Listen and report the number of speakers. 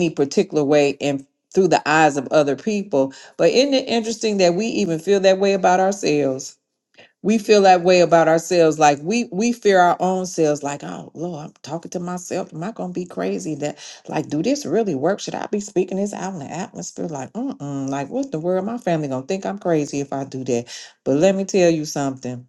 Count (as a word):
one